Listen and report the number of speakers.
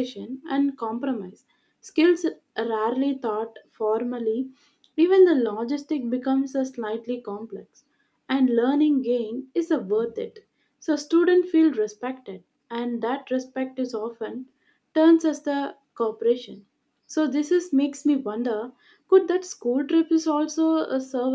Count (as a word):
one